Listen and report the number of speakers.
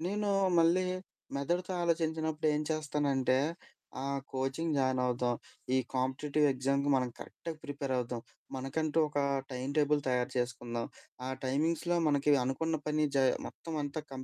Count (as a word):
one